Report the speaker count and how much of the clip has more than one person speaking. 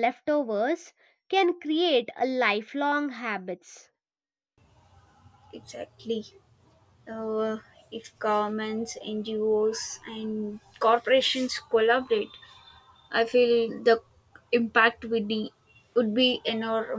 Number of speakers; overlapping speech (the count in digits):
2, no overlap